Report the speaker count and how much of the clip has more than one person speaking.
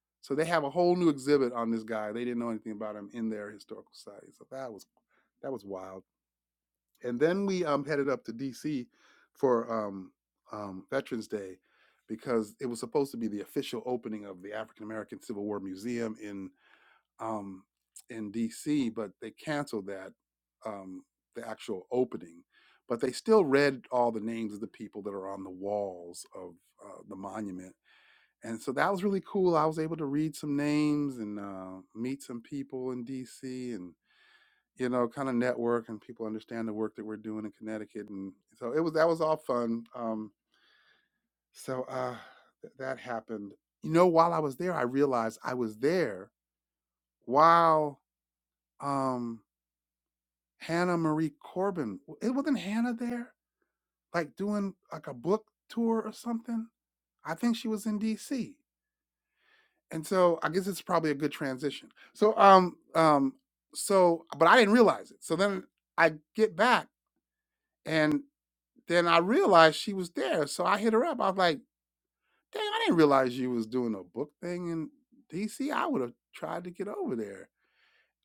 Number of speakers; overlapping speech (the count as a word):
one, no overlap